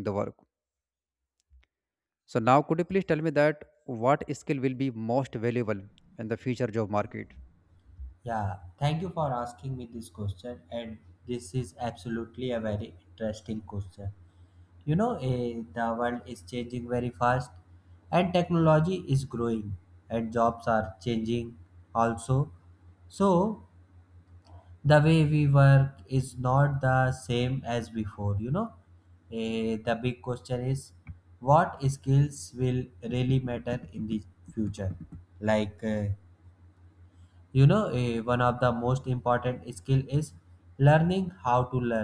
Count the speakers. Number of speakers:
2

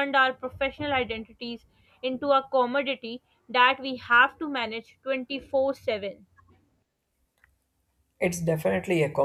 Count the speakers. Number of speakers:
2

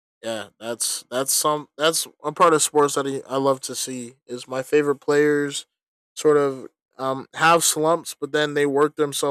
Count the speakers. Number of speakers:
1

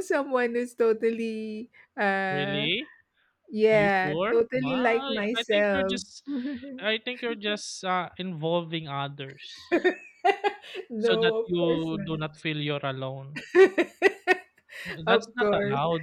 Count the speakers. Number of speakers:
2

